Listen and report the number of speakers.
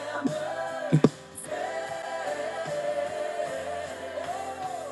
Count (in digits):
0